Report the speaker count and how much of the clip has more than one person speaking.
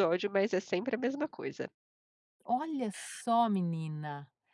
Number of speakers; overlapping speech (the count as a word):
two, no overlap